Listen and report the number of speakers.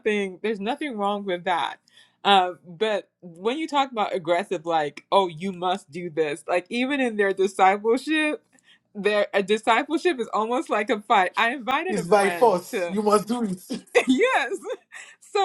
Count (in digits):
2